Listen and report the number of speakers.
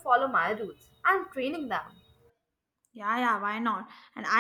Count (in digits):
2